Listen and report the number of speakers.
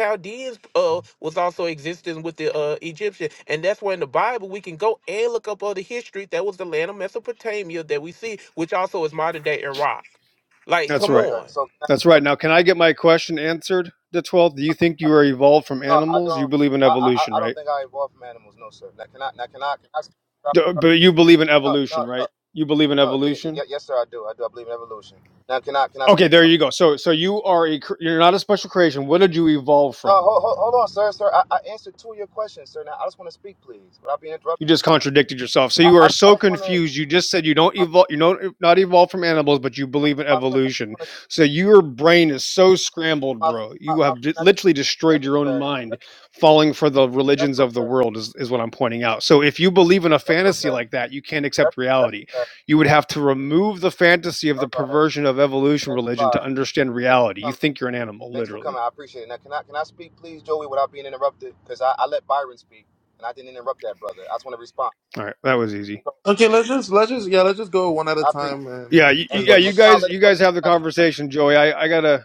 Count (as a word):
four